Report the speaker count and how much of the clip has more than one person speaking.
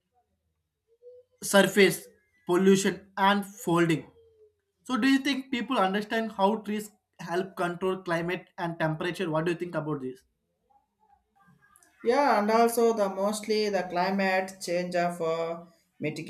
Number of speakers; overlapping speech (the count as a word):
two, no overlap